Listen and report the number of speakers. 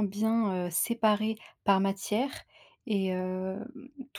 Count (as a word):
one